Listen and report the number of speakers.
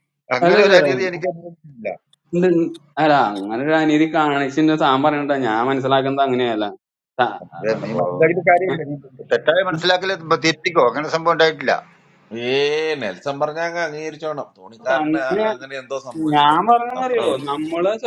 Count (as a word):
three